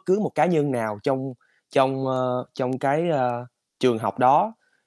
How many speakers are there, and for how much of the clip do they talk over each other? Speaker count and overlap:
one, no overlap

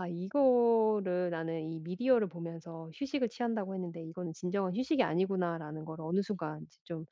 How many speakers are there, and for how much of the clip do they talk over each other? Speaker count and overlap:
one, no overlap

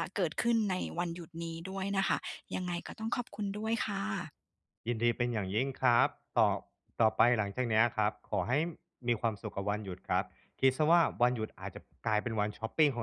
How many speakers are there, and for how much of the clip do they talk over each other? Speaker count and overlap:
two, no overlap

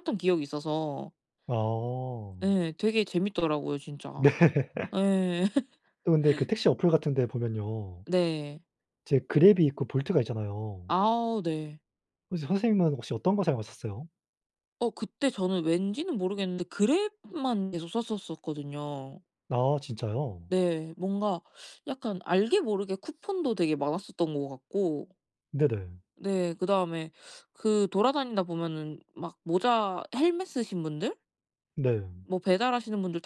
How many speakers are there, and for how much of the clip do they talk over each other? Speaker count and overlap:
two, under 1%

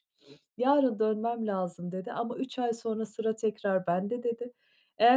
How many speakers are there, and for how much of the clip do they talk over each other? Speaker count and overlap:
one, no overlap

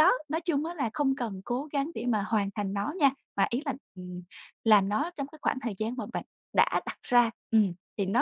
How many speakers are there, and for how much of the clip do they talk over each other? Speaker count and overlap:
one, no overlap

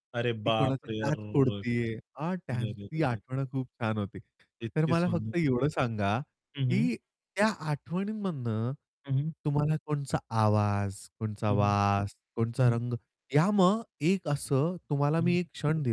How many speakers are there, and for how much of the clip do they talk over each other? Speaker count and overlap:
two, about 19%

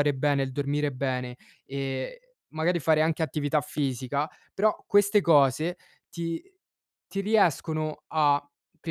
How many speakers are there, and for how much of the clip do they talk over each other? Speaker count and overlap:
one, no overlap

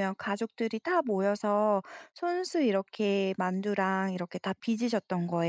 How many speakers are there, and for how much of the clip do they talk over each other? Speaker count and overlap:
one, no overlap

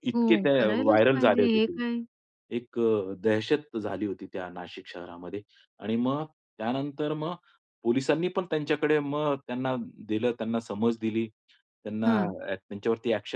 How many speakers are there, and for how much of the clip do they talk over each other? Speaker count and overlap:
two, about 15%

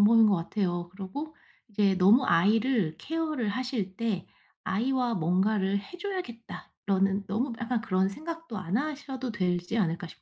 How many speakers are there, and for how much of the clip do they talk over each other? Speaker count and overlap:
one, no overlap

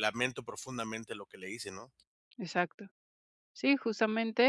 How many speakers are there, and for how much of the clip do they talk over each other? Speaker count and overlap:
two, no overlap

